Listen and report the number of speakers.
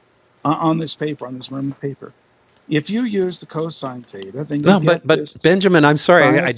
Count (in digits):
2